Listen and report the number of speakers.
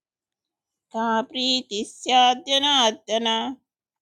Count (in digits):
1